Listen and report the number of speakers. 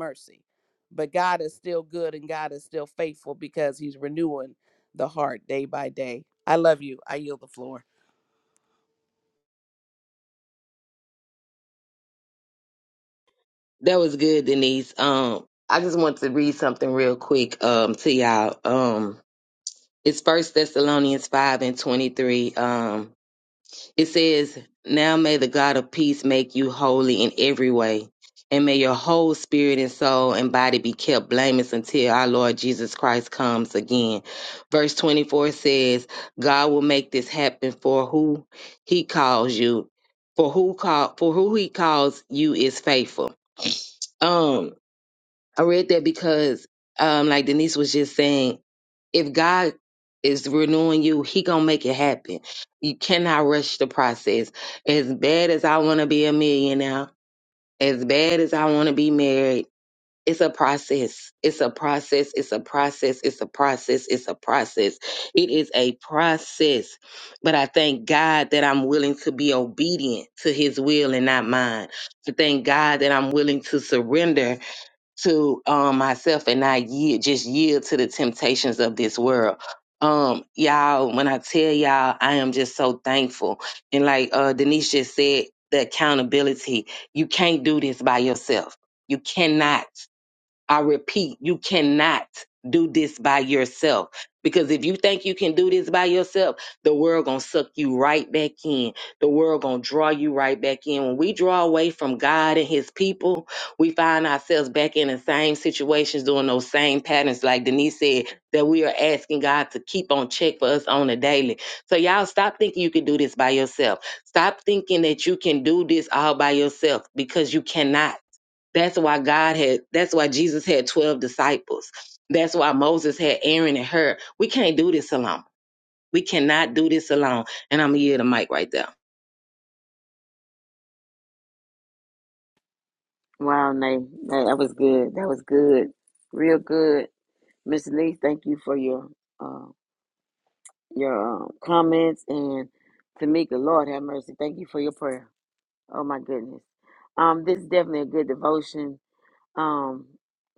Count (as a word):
three